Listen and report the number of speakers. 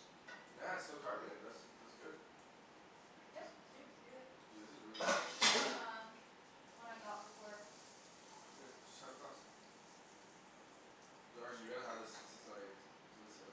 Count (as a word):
two